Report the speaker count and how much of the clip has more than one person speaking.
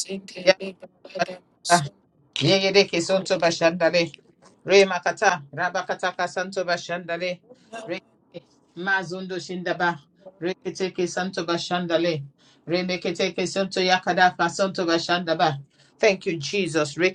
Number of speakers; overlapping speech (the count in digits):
2, no overlap